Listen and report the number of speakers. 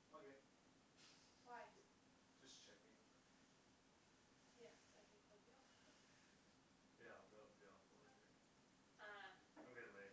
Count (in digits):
2